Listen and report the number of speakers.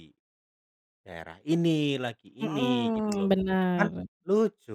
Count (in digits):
2